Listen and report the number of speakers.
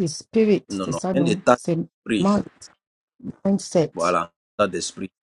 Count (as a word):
two